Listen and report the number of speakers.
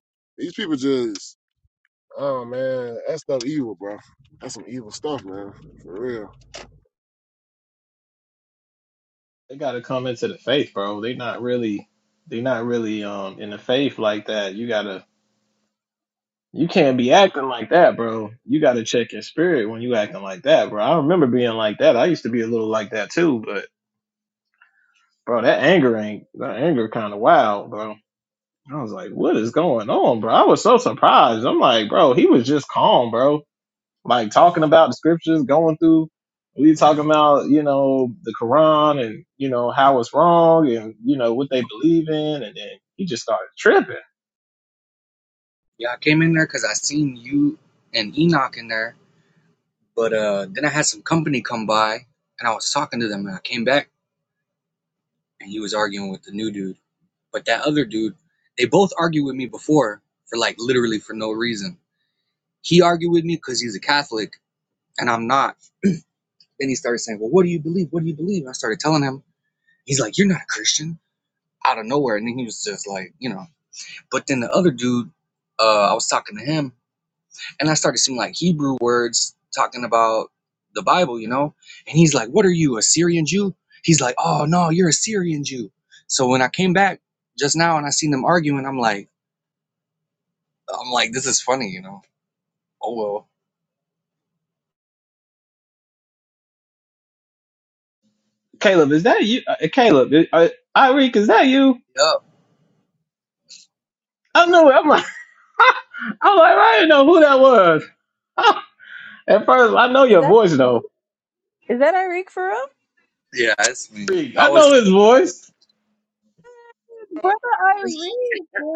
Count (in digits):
4